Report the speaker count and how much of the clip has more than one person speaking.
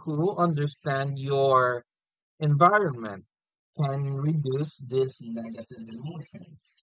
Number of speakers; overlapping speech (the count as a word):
one, no overlap